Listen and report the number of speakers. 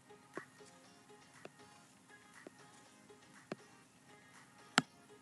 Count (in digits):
0